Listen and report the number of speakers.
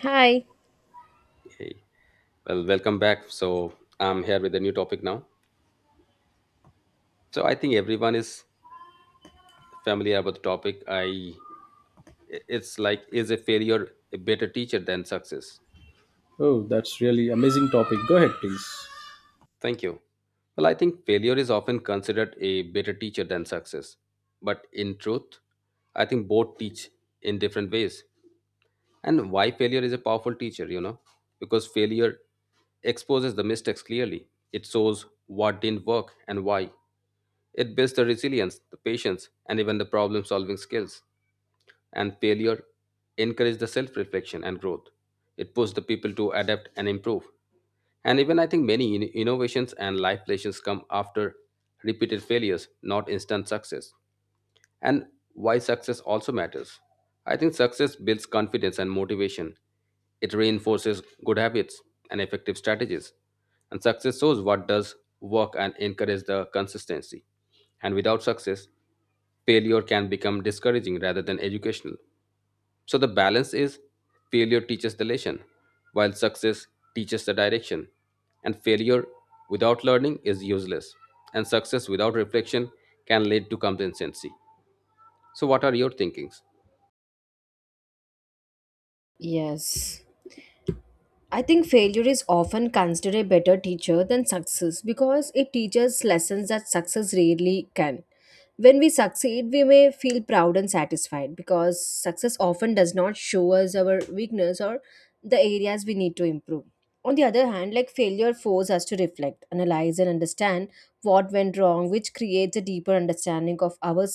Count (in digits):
3